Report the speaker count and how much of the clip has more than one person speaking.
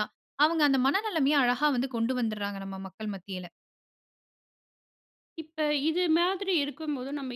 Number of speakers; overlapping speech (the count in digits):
2, no overlap